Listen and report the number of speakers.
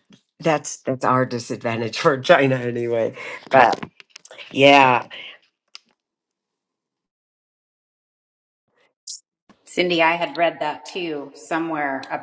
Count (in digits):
2